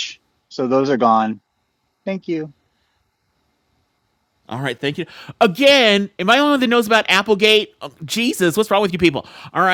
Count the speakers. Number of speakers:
2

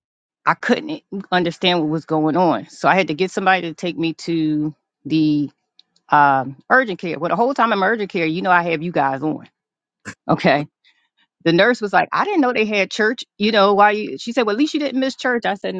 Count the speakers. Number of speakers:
1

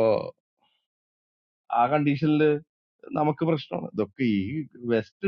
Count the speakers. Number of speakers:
1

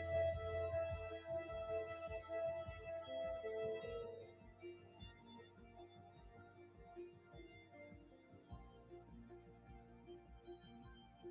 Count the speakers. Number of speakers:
0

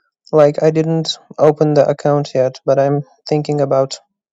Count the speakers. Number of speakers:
1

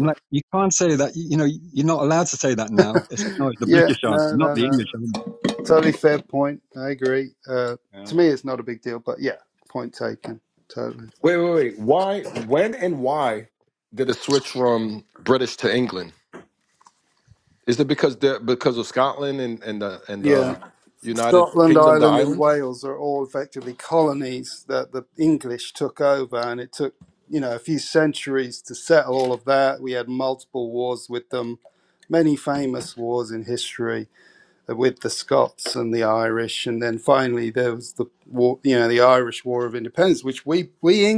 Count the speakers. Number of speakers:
3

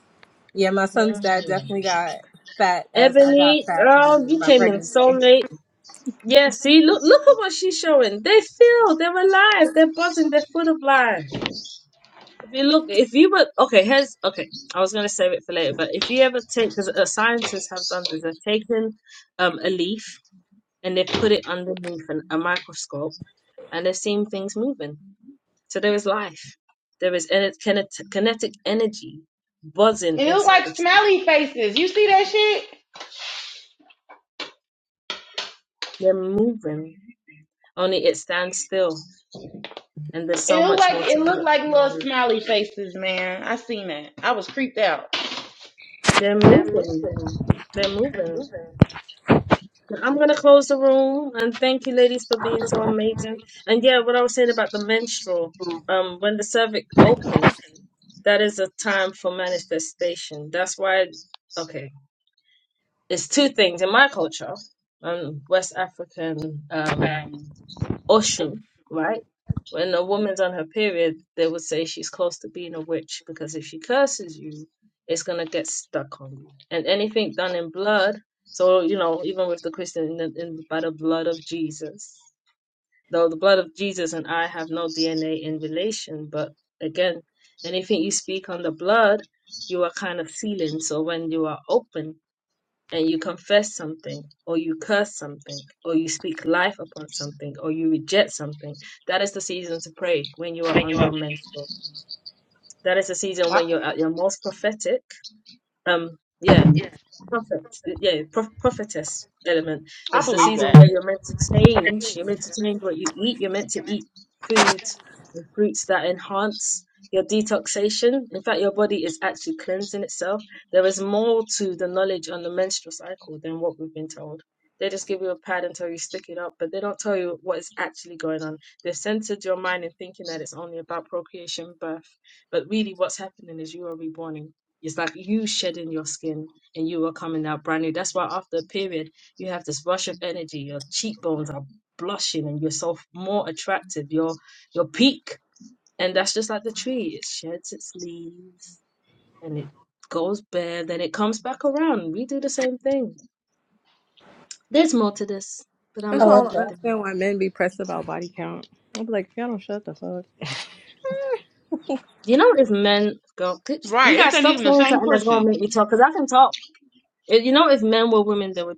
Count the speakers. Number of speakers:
4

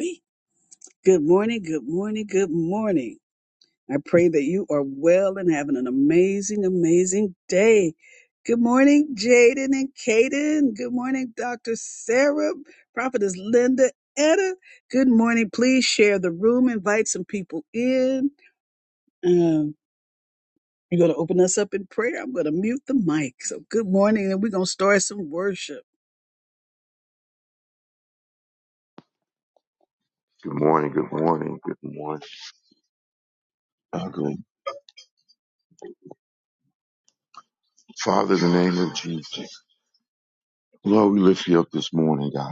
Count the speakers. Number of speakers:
2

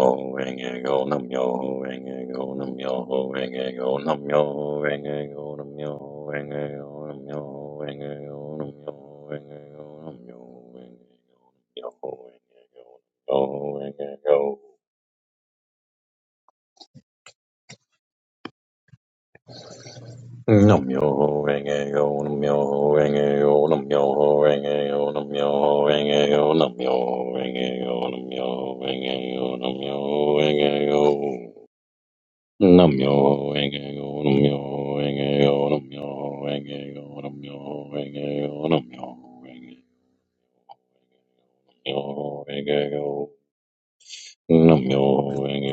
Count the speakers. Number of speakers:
1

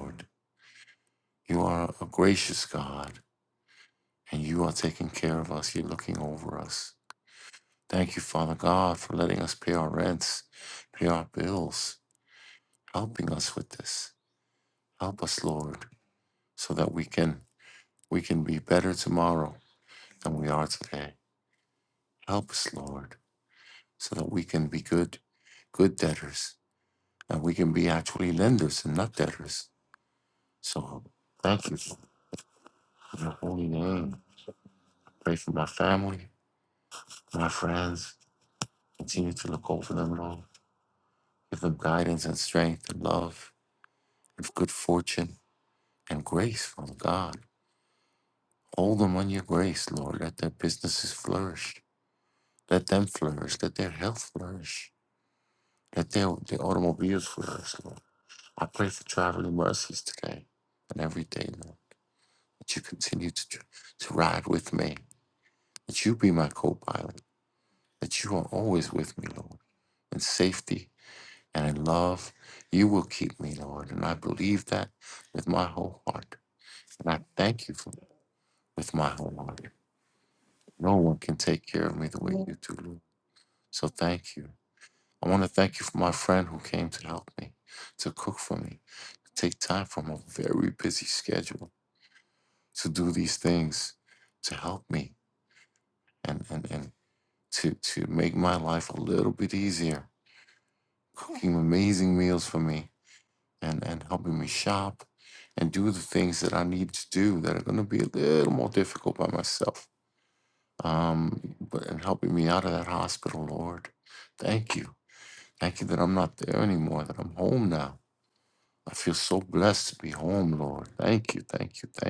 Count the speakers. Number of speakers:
1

